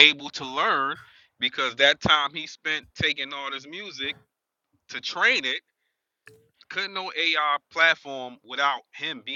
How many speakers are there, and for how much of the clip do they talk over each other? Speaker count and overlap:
1, no overlap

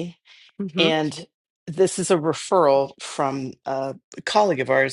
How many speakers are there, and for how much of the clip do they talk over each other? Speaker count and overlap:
1, no overlap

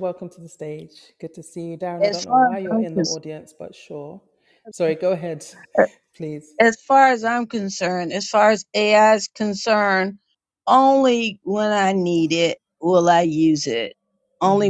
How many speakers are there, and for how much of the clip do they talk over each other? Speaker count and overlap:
2, about 9%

